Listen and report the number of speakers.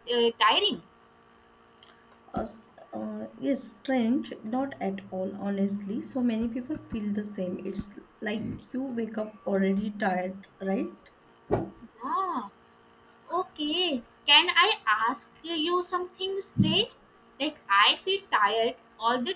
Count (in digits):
2